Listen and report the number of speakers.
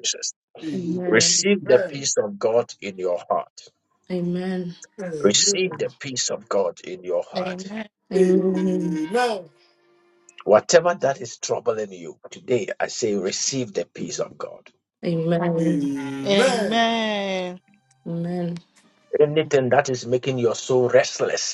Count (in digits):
4